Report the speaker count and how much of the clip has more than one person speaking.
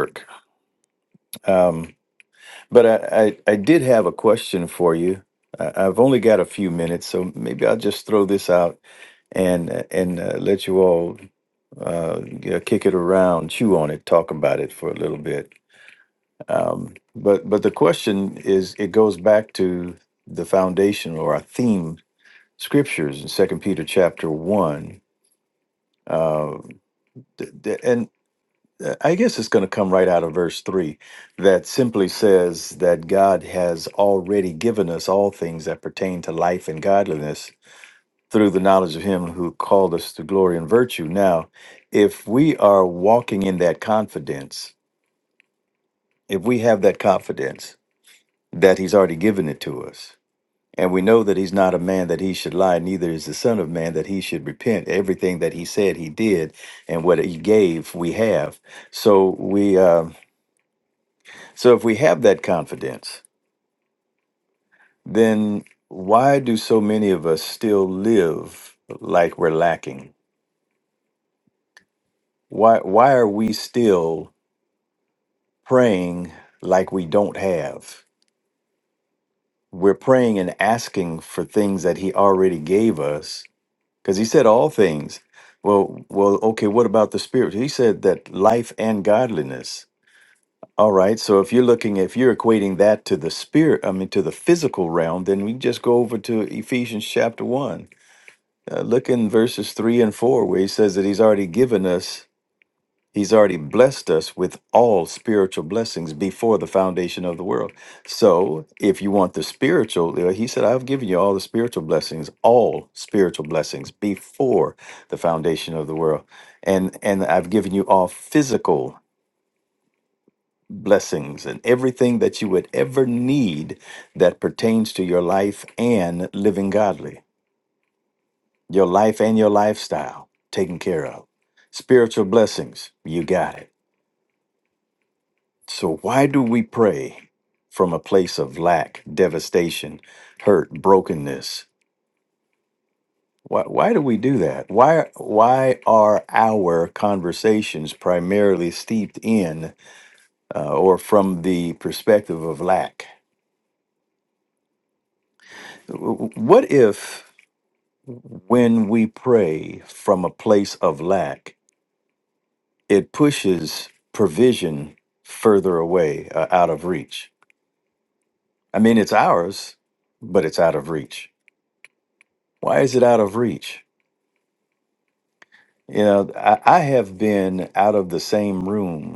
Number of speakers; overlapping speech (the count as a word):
one, no overlap